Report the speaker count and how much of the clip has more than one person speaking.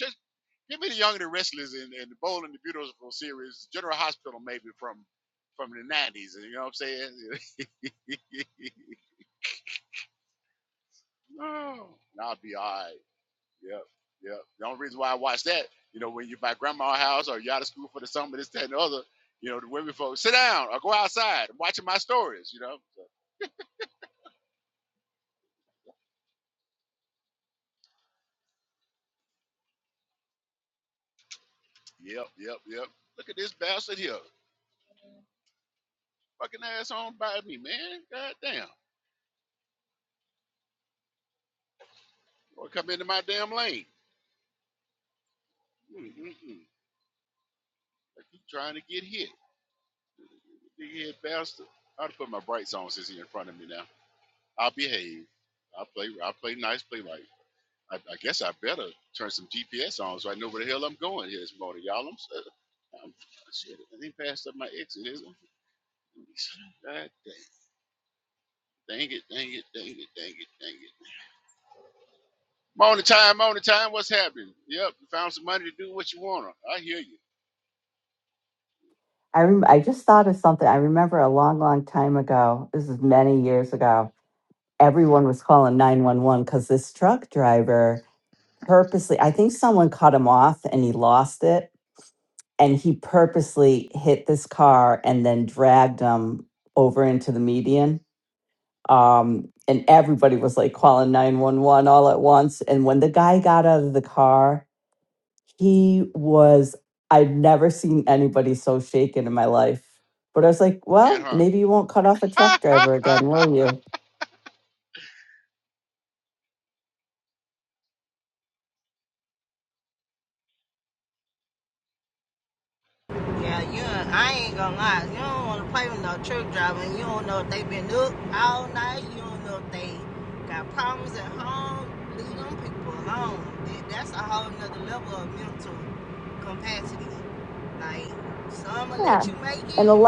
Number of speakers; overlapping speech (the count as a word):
three, about 1%